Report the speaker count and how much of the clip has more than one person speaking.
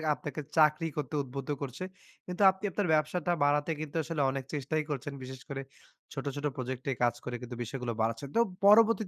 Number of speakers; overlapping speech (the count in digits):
1, no overlap